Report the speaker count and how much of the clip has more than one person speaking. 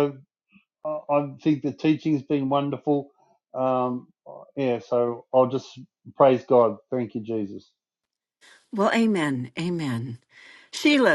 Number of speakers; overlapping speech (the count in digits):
2, no overlap